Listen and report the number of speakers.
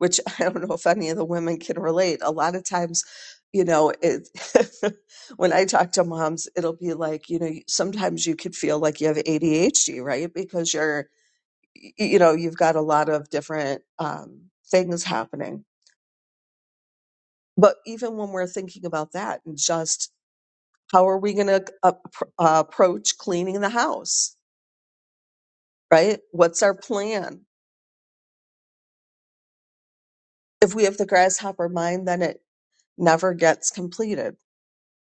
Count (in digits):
1